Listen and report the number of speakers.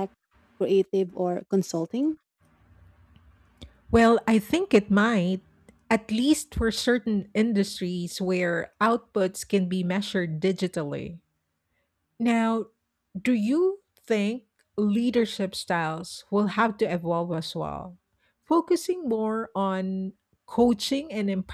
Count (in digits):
2